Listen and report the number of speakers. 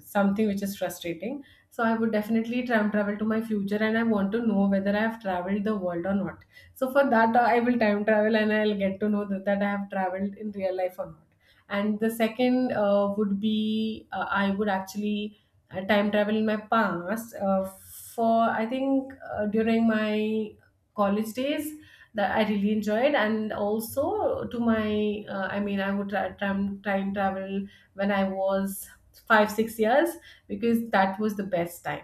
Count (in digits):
1